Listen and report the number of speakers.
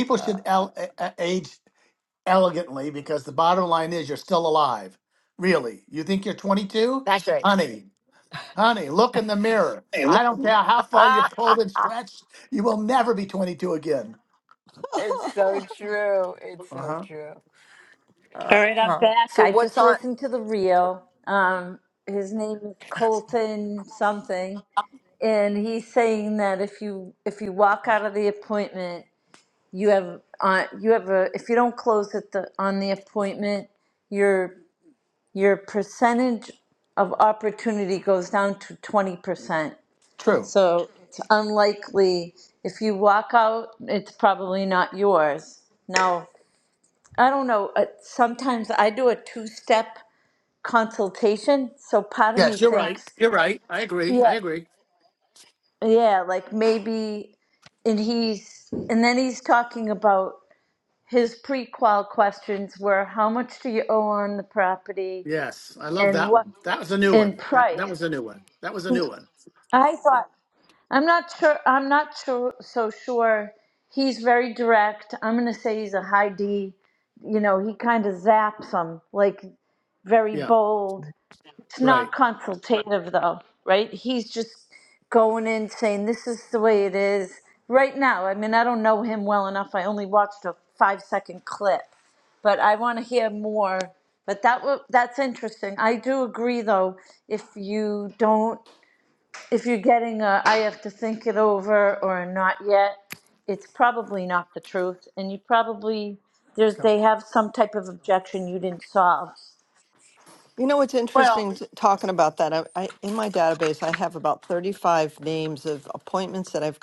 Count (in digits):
4